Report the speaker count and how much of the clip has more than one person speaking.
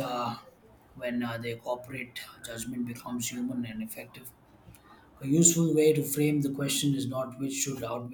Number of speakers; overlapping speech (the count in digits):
1, no overlap